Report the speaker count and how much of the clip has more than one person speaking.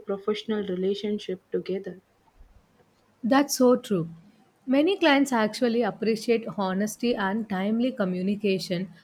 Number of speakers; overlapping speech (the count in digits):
2, no overlap